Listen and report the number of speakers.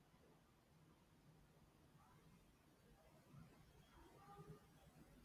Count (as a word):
zero